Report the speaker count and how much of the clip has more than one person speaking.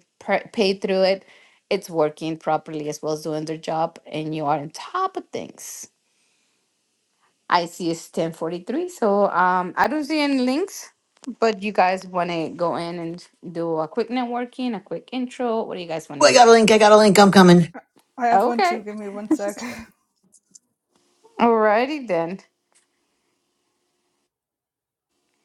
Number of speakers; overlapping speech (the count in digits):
3, about 3%